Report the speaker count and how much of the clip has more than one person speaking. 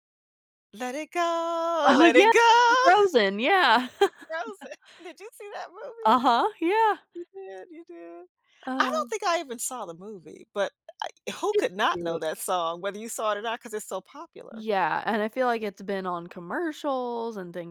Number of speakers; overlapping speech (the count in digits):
2, about 9%